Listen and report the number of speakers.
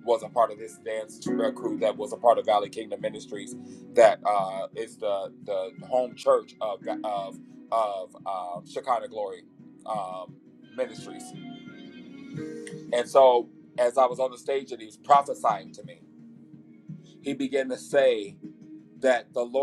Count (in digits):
1